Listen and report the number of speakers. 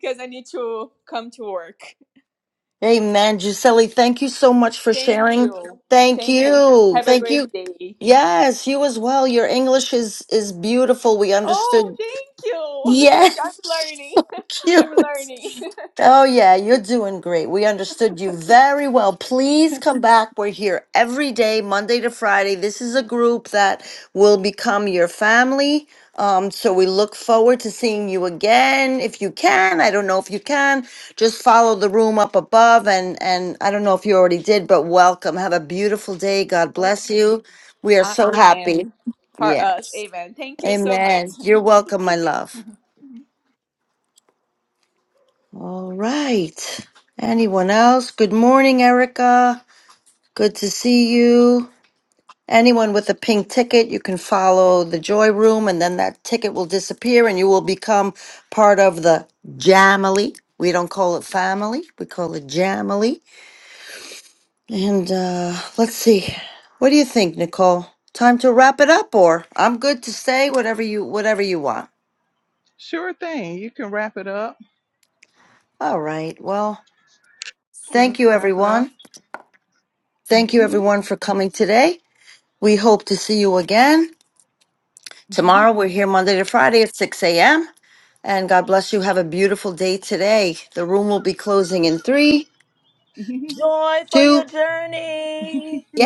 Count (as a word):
four